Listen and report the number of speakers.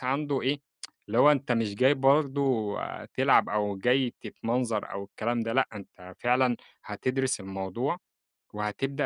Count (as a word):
one